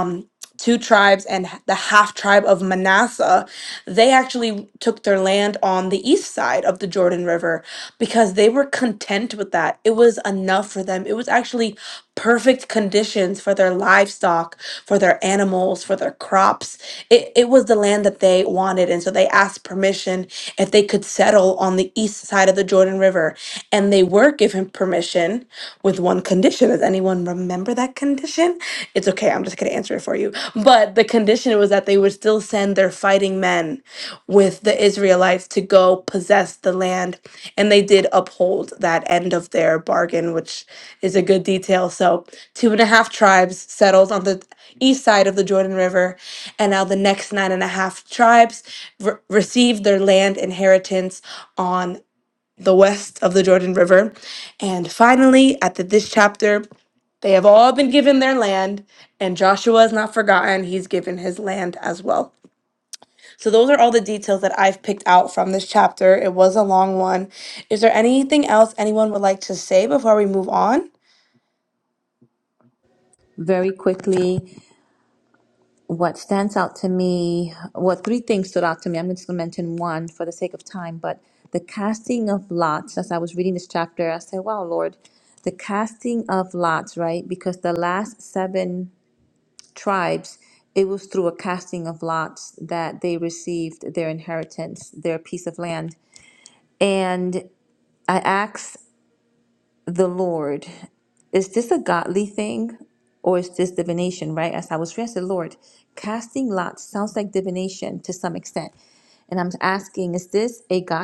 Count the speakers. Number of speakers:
2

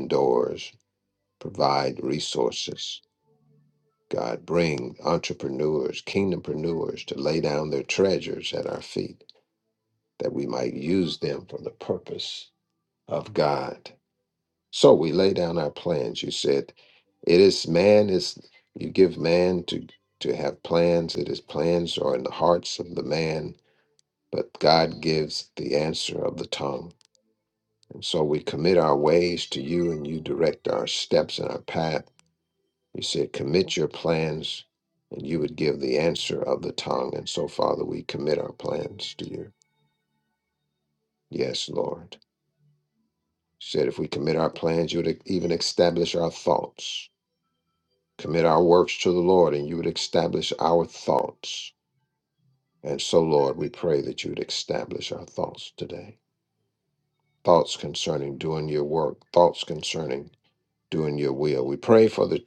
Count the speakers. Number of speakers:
1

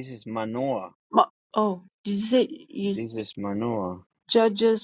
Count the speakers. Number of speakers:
2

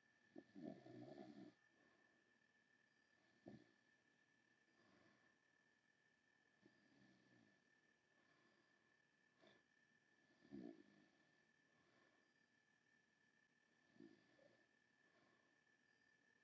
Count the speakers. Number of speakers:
0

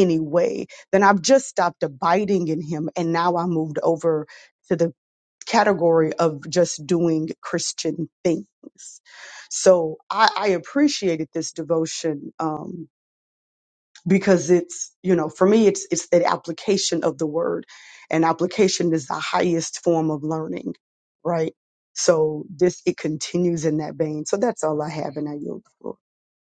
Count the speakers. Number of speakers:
1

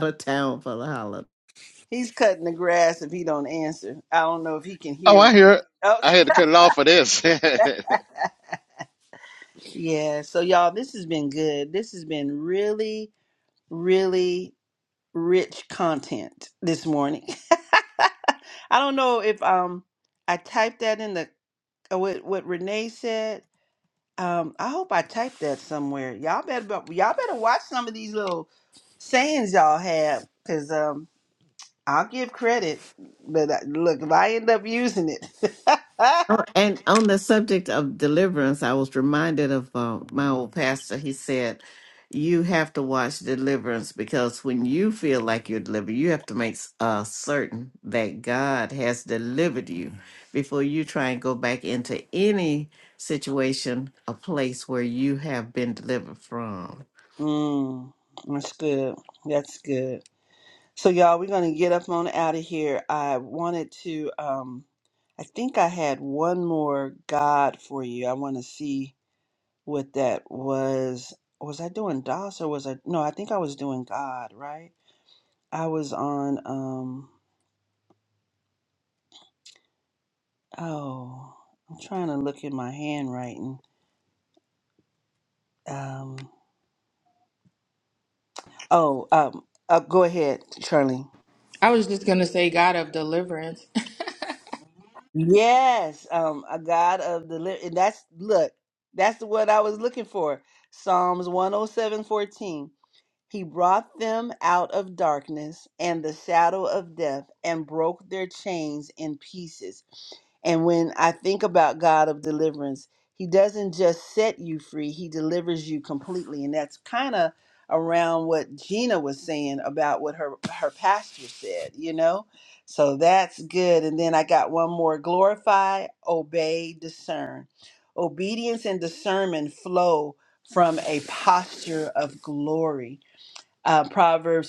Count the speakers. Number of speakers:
4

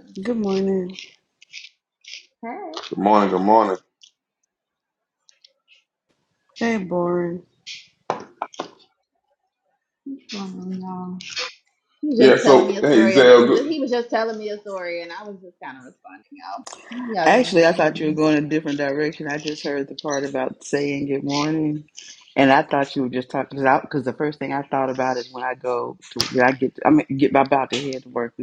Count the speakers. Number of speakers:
3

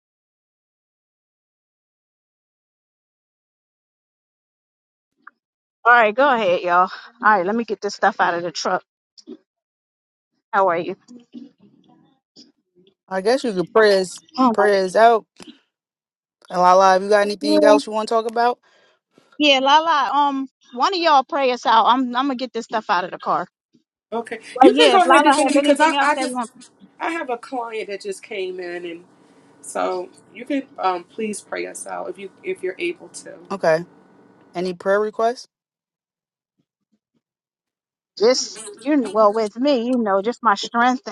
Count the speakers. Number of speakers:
3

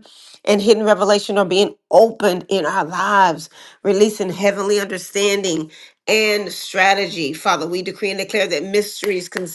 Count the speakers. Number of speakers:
1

